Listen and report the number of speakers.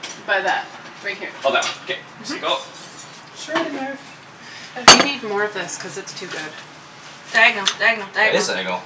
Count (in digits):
3